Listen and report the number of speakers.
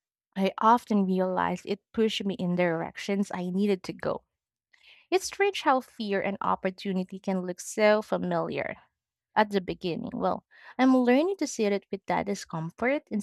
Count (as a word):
one